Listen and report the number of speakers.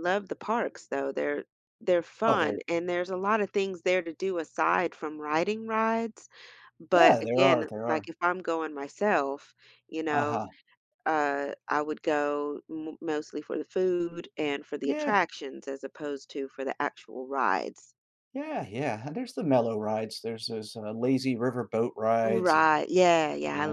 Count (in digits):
2